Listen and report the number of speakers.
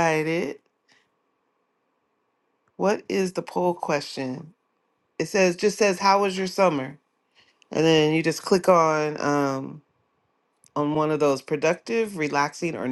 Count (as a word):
one